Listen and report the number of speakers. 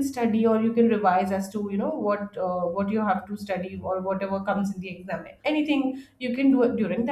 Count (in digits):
1